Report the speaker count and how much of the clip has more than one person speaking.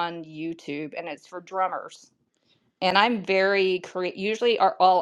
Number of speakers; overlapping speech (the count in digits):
1, no overlap